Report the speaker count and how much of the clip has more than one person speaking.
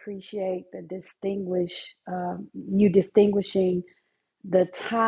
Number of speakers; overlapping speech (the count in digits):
1, no overlap